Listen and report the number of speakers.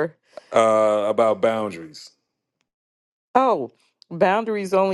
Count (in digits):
2